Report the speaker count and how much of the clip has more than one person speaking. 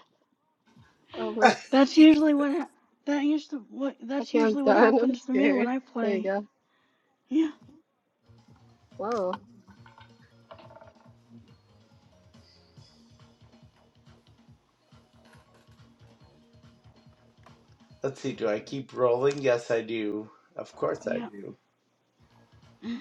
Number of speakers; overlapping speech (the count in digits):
3, about 9%